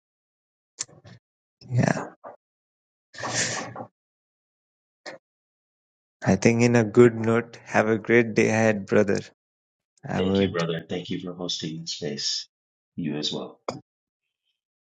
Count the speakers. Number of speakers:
2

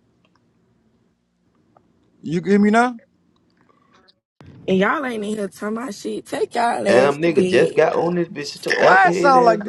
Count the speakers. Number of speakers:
3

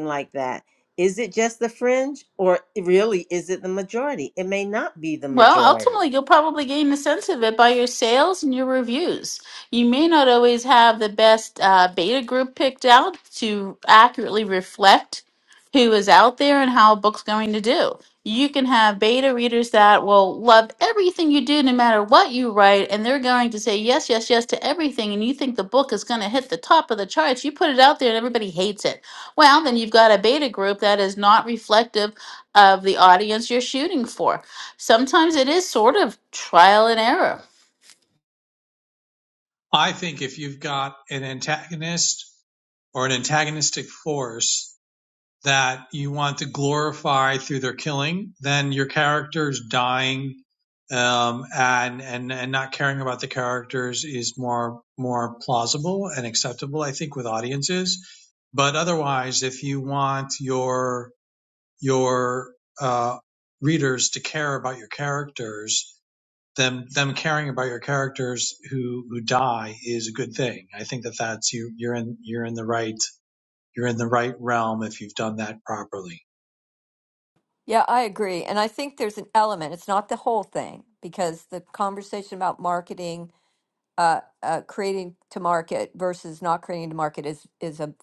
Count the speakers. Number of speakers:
4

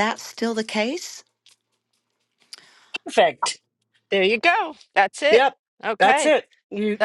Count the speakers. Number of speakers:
3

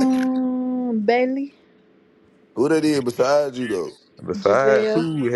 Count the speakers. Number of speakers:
3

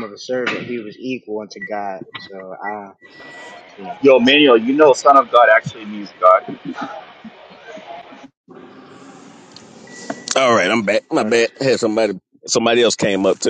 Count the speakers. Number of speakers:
3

